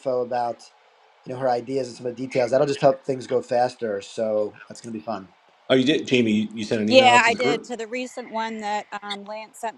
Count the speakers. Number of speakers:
three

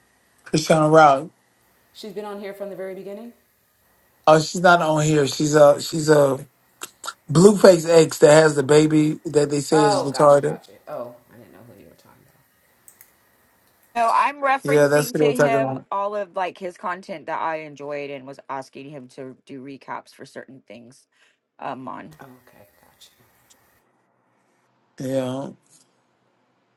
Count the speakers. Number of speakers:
three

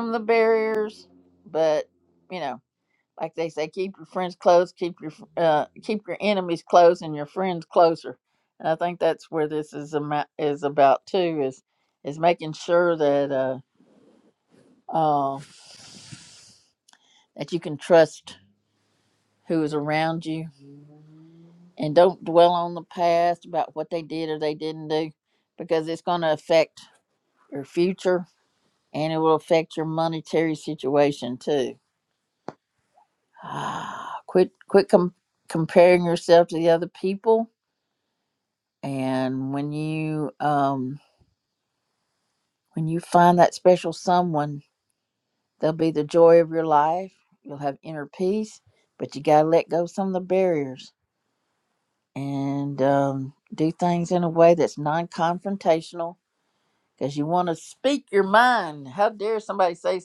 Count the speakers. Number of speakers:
one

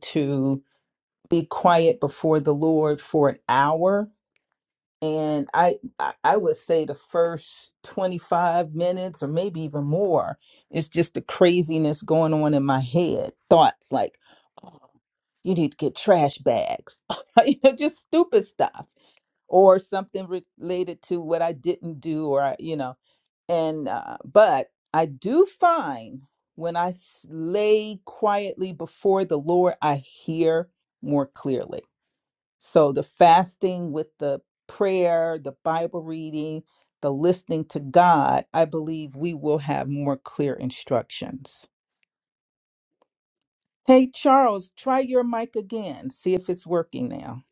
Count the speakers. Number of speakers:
one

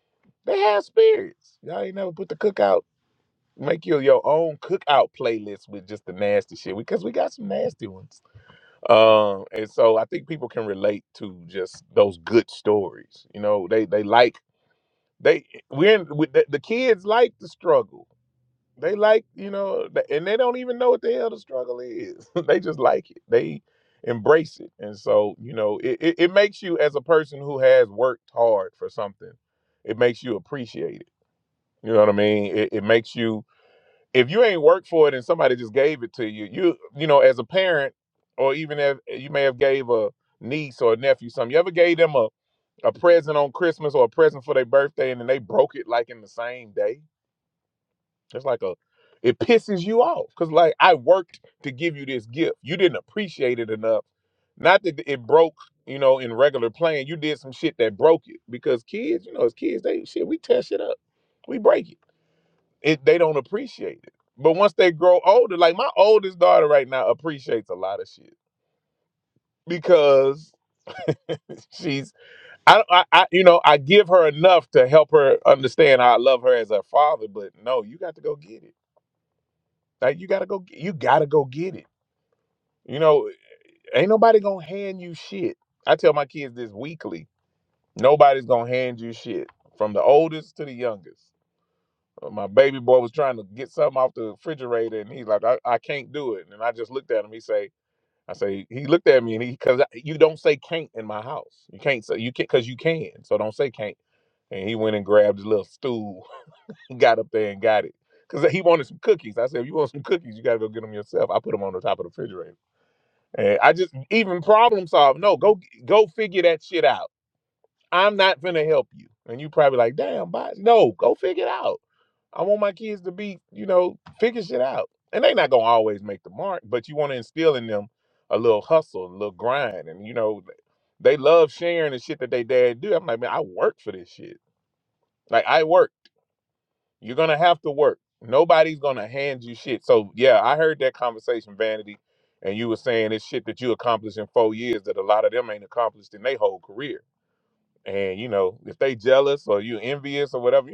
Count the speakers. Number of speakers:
one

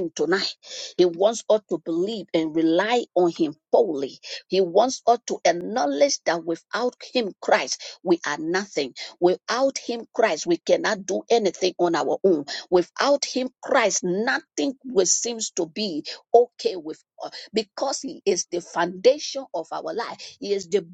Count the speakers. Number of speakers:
one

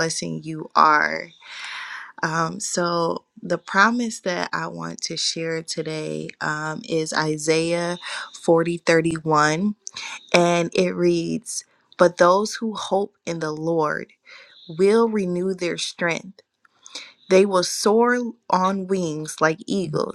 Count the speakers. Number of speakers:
one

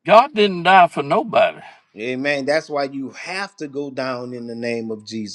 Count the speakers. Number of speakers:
two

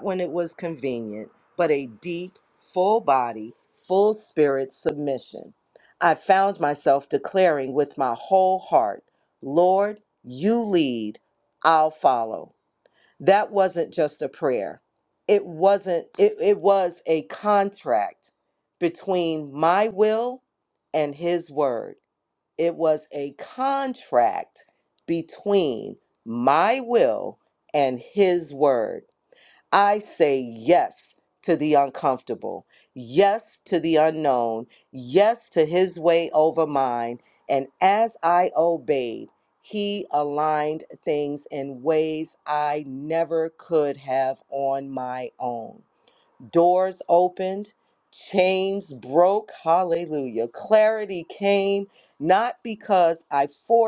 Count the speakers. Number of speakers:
one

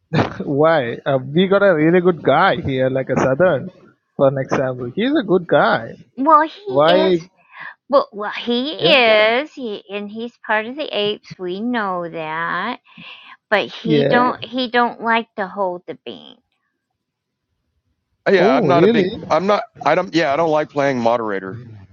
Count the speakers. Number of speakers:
three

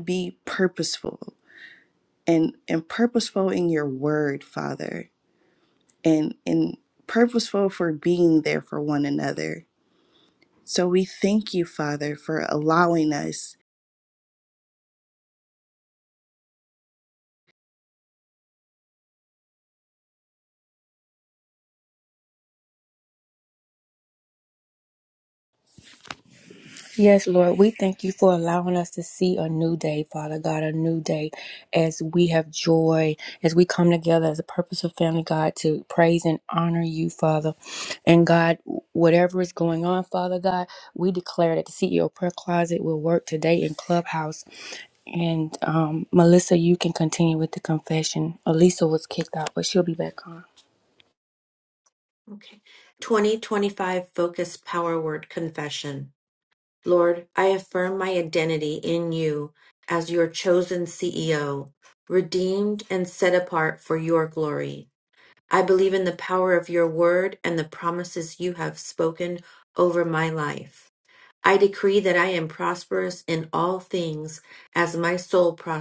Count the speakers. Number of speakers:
three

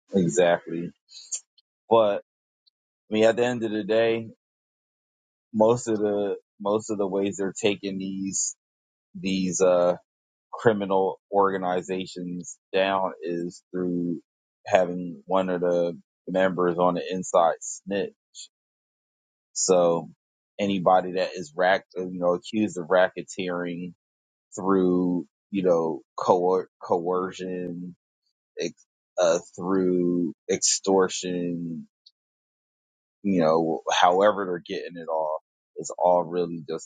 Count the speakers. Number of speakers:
one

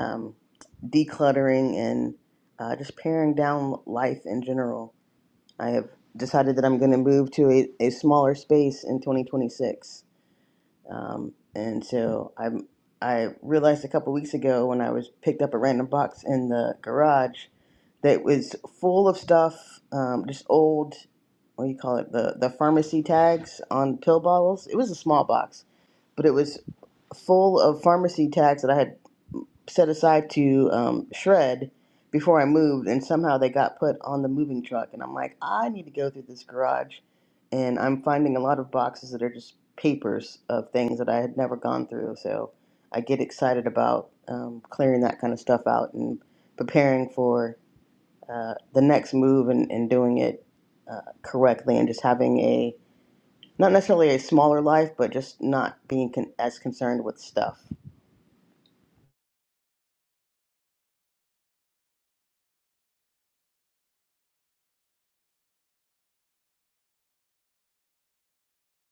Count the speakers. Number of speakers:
one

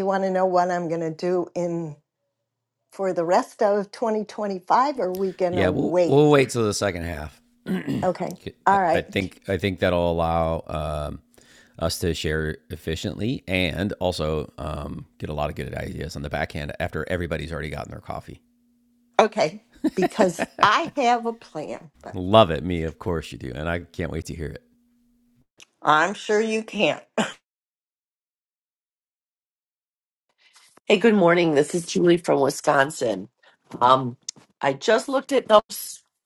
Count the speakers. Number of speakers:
three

